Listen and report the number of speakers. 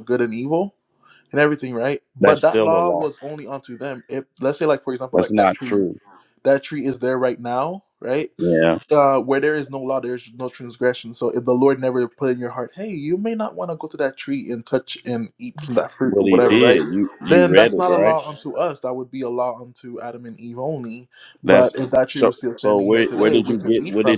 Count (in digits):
2